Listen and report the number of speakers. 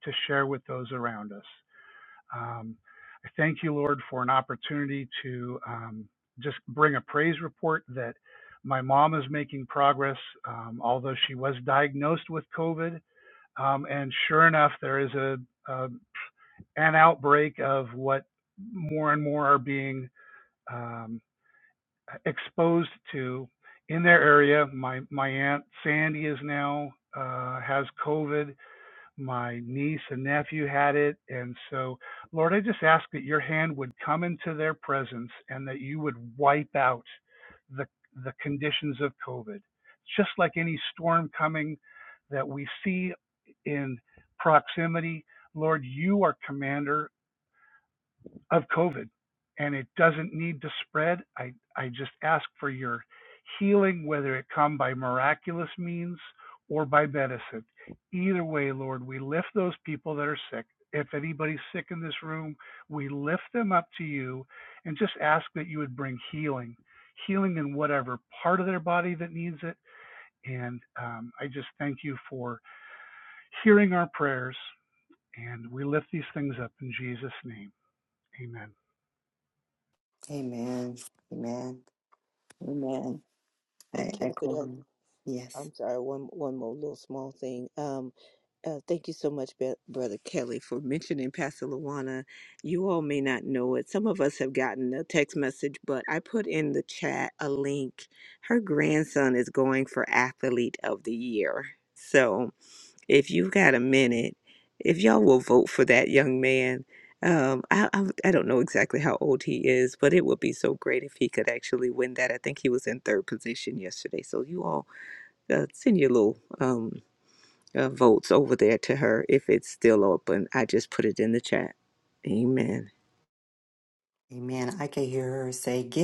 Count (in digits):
3